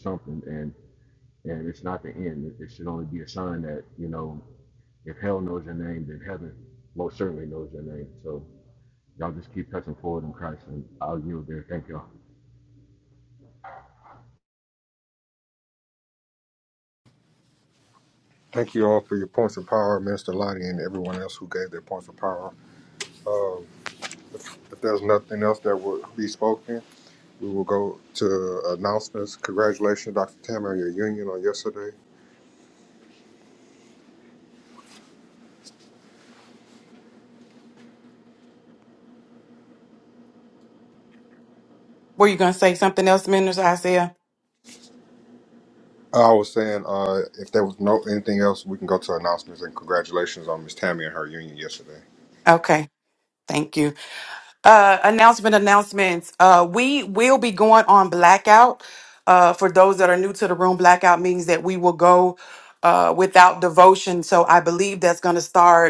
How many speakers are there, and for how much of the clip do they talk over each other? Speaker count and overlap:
3, no overlap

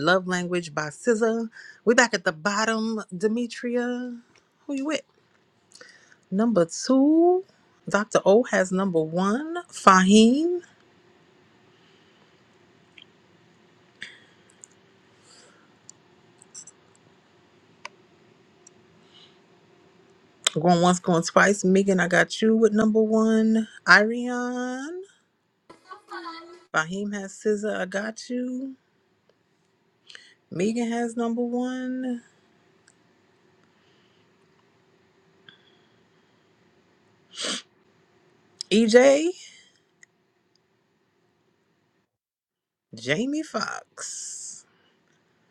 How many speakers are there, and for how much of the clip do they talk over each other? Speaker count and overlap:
1, no overlap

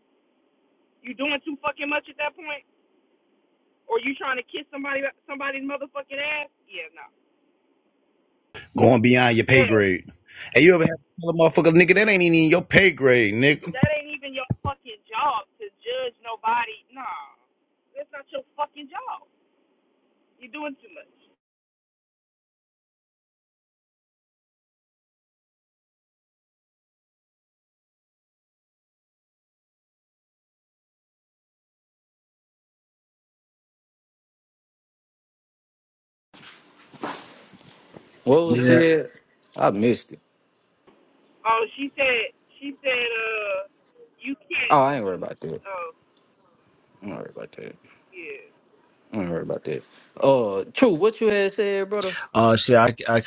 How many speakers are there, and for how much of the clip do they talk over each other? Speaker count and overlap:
4, about 1%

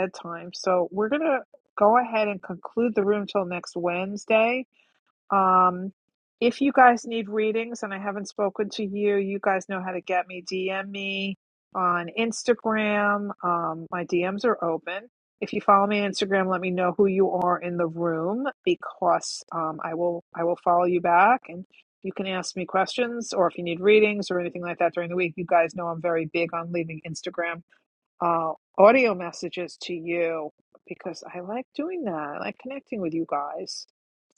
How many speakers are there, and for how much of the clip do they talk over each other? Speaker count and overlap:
1, no overlap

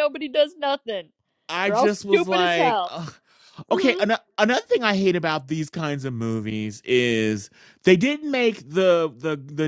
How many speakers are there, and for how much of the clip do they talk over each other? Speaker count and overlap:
2, about 16%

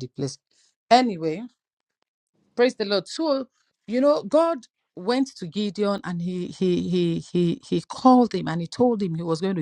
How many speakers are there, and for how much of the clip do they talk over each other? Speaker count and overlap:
1, no overlap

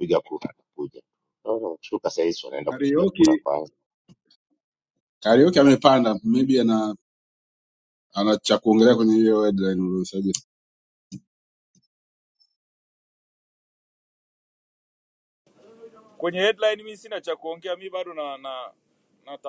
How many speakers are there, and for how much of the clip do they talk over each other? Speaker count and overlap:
3, about 3%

